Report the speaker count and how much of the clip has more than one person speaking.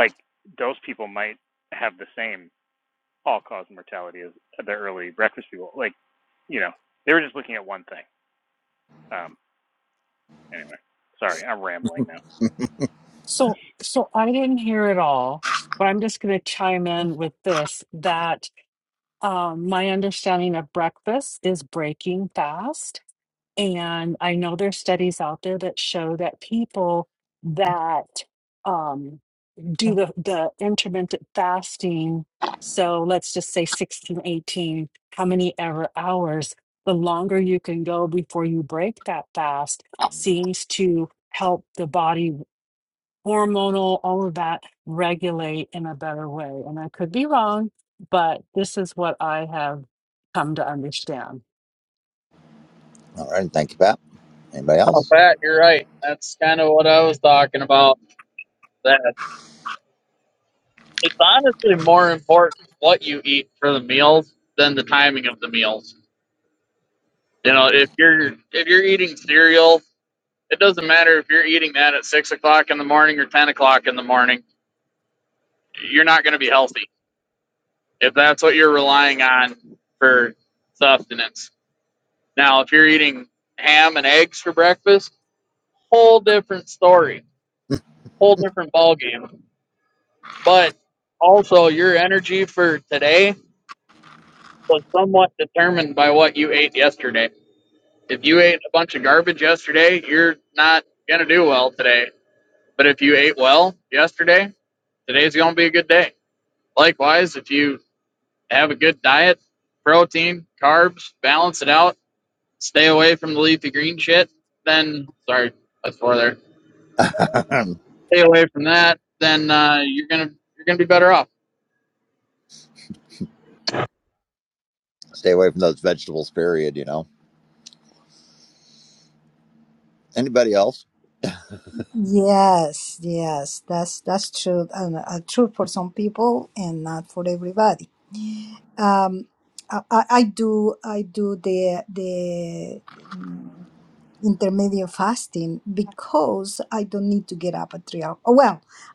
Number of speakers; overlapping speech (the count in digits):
5, under 1%